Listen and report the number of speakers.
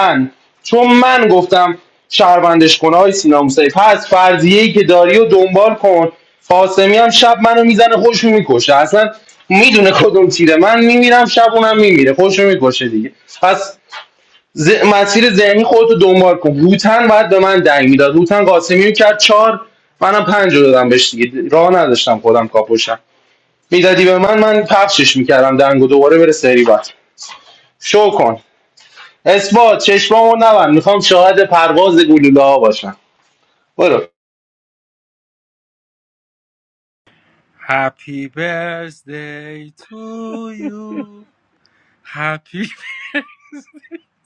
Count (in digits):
2